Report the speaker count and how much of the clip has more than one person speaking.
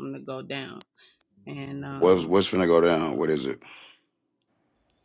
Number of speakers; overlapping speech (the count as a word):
two, about 8%